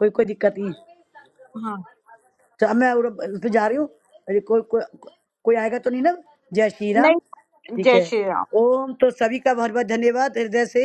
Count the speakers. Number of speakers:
2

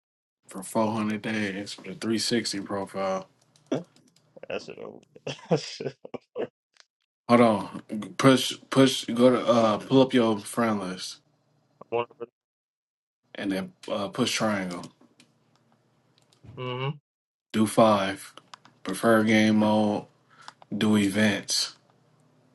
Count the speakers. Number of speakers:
2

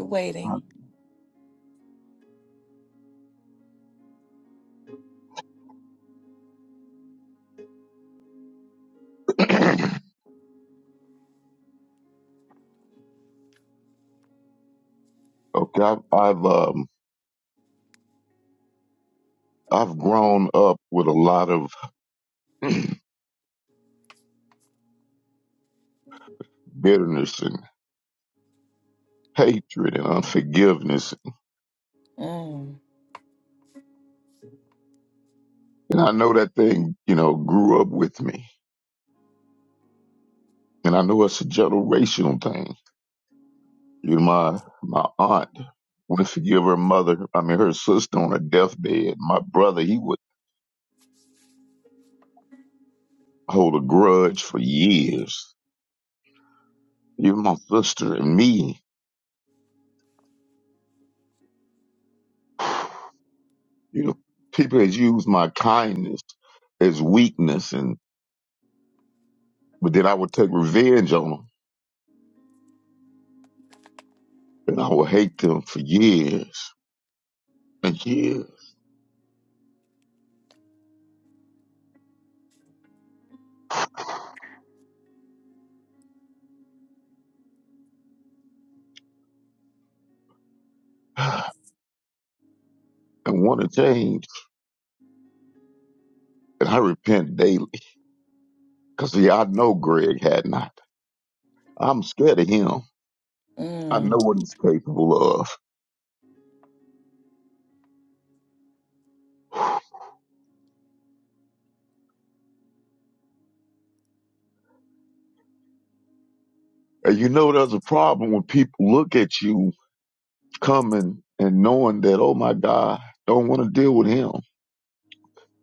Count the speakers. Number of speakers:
2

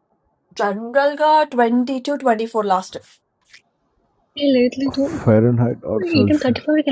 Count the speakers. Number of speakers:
3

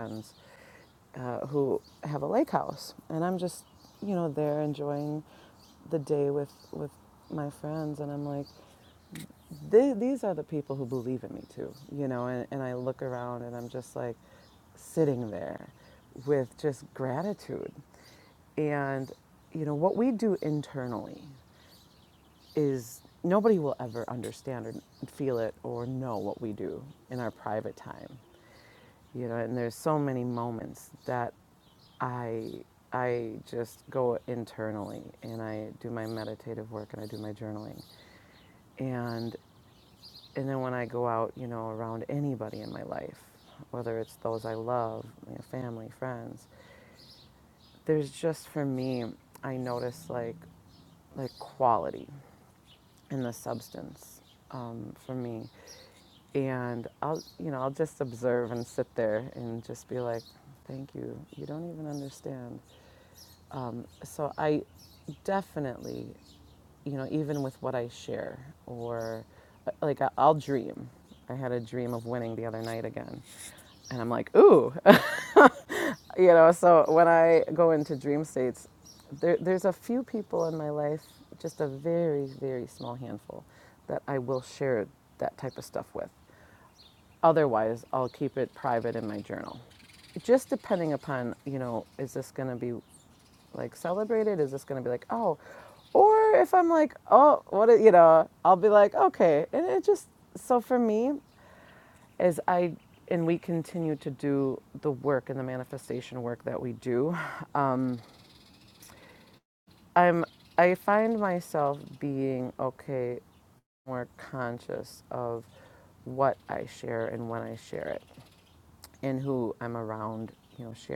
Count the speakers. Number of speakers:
1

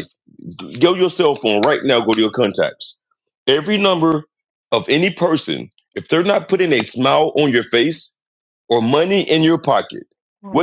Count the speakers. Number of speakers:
1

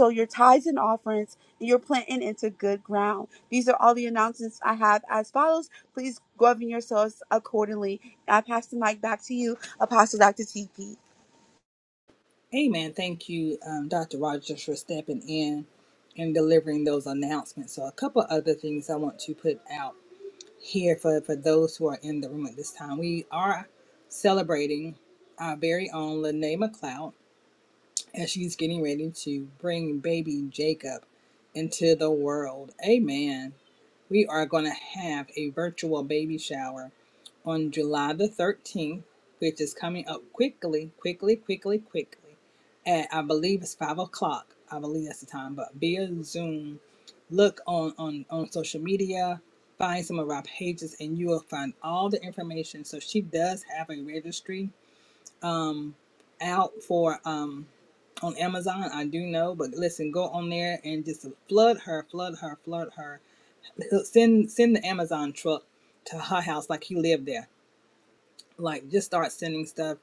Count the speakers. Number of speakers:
2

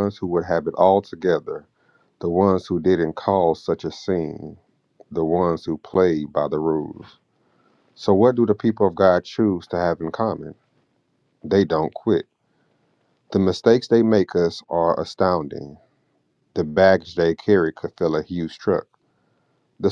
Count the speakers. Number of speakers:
1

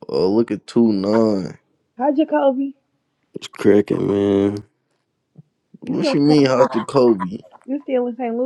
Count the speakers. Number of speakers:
3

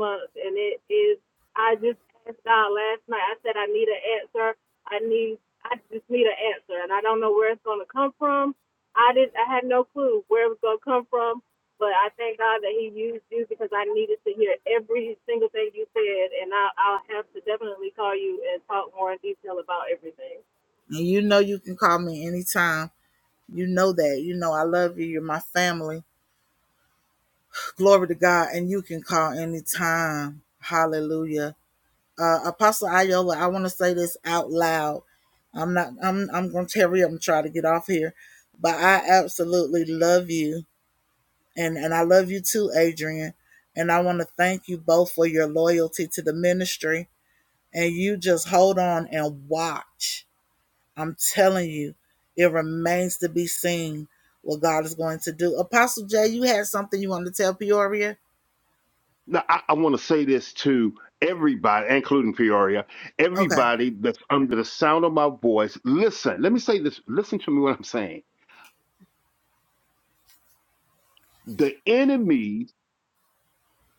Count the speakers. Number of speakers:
3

